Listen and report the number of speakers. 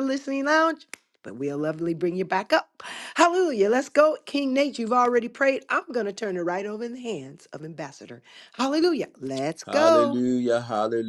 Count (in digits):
2